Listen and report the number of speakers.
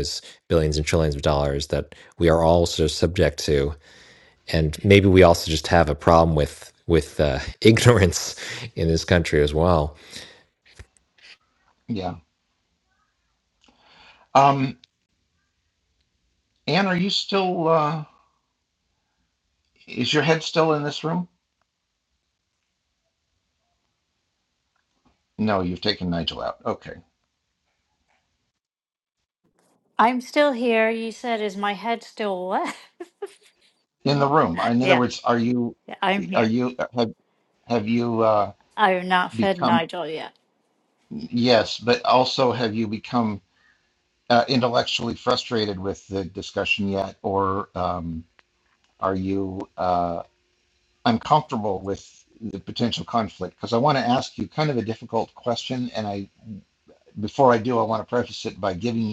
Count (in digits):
3